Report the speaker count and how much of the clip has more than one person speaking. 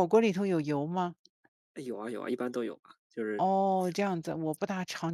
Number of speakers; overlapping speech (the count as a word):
two, under 1%